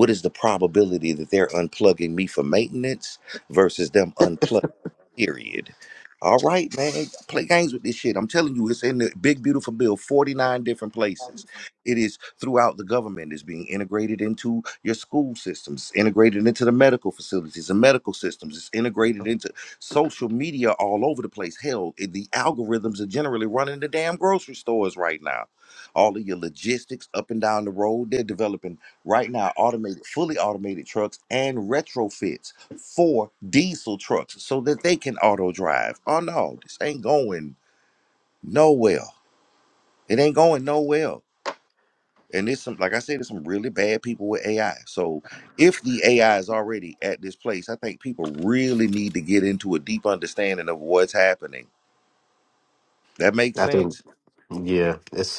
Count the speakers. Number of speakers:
two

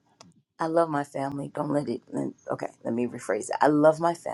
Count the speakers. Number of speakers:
one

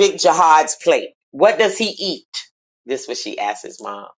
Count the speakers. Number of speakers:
one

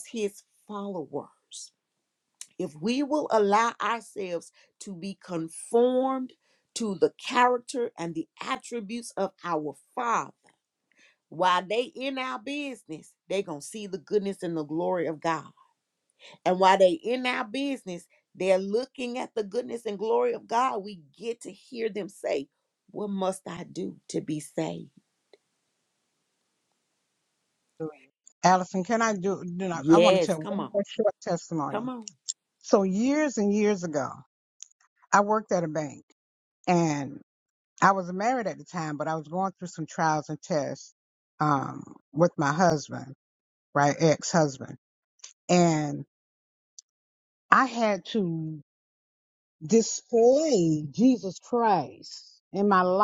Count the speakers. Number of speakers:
two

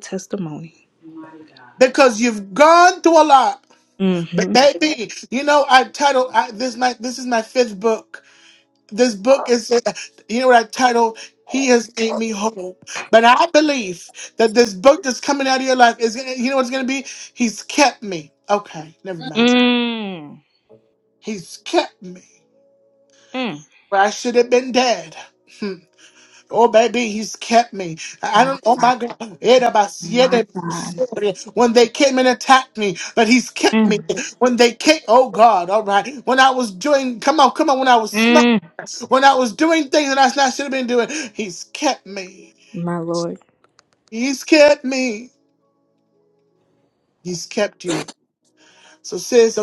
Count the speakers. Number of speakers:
two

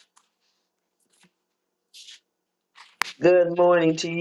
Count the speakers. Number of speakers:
one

